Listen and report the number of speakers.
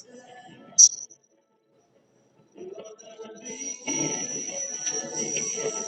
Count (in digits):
0